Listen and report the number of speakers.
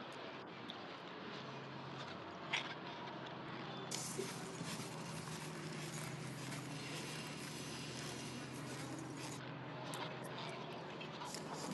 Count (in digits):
0